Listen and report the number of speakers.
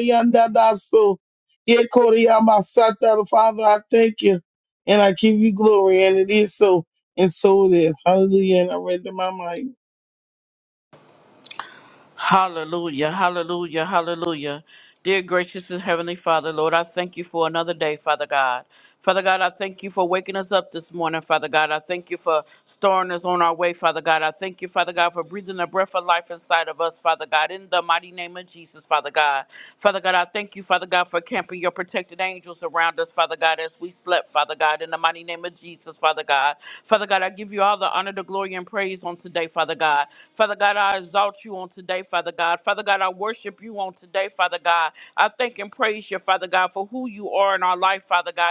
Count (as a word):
two